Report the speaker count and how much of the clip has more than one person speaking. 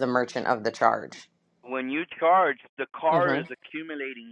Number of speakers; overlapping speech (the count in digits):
2, about 9%